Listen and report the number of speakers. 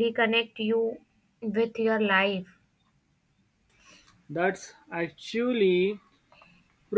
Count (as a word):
two